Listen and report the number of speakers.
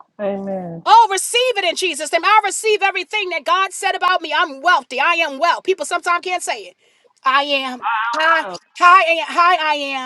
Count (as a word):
two